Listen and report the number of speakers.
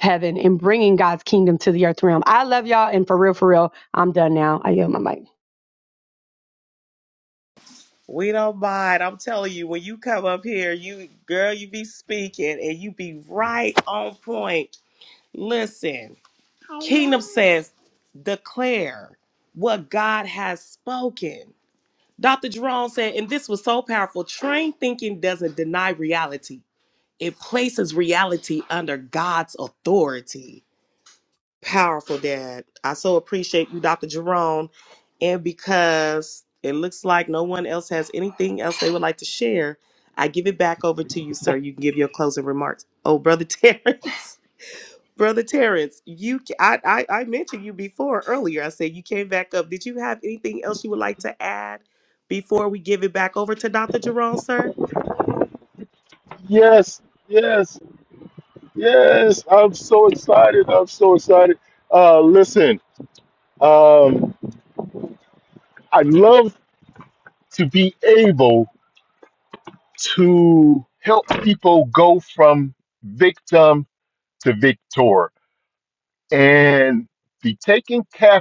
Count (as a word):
three